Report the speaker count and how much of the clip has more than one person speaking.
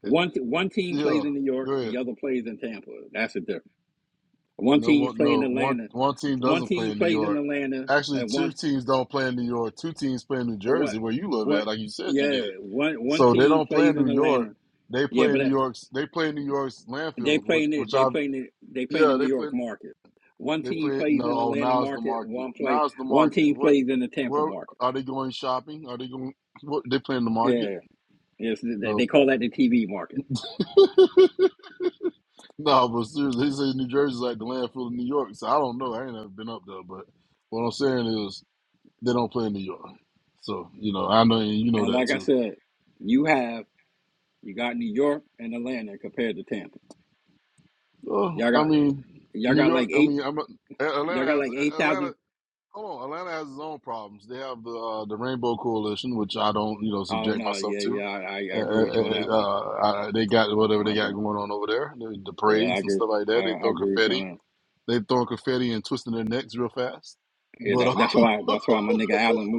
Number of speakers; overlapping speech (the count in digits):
2, about 27%